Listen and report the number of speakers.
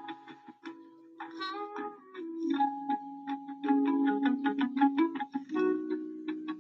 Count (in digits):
0